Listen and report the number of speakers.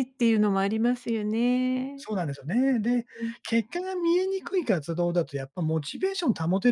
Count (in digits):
2